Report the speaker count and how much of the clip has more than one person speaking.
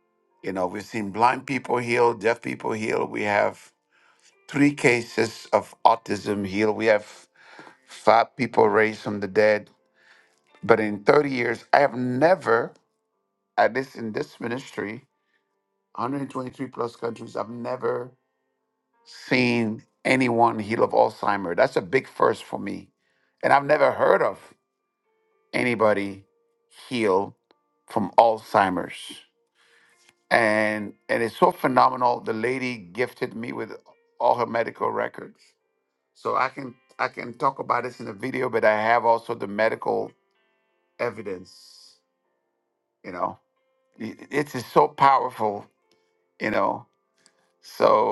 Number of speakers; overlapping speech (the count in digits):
1, no overlap